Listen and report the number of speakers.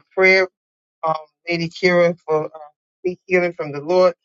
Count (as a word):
one